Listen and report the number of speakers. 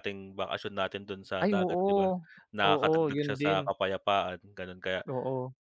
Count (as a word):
two